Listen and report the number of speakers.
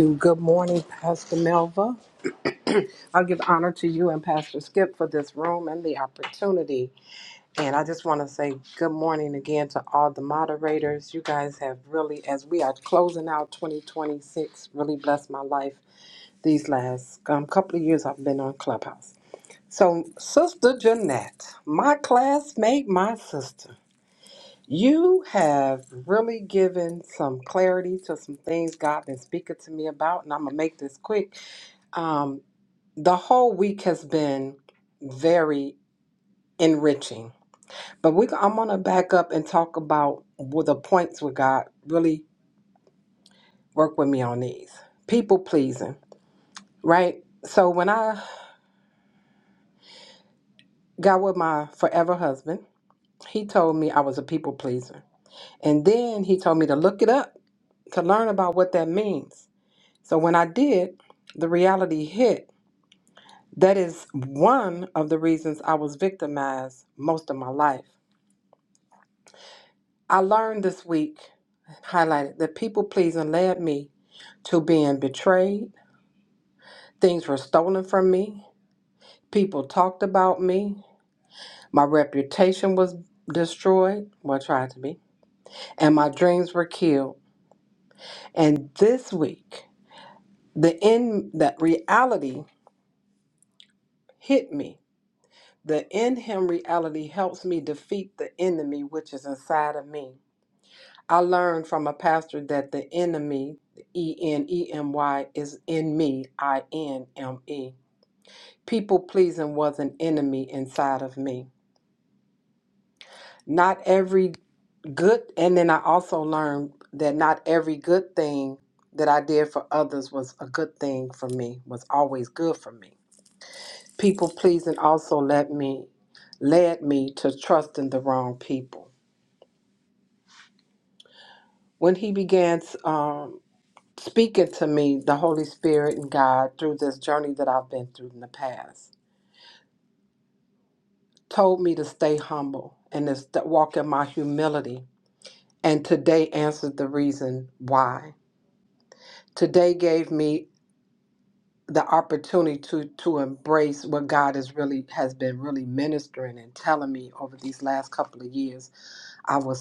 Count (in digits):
1